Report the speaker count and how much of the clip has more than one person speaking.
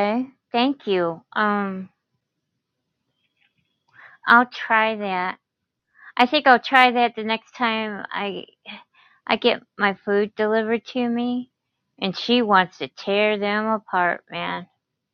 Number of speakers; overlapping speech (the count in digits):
1, no overlap